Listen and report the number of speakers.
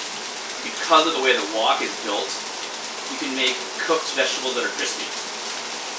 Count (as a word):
one